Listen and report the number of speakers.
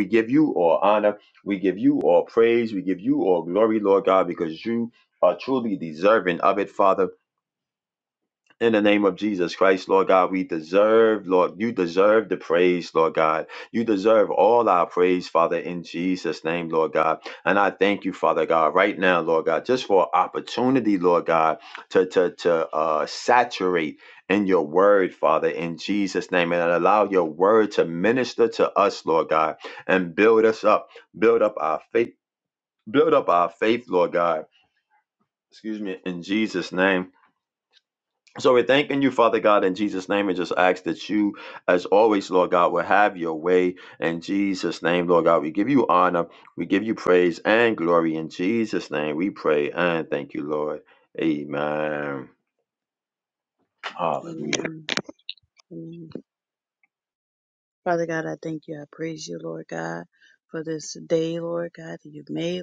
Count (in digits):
2